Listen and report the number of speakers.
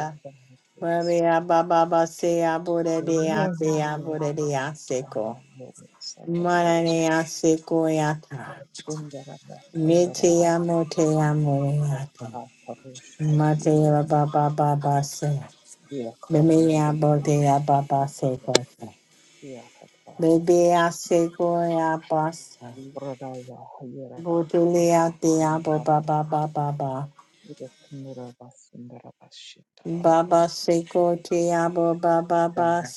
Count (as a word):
two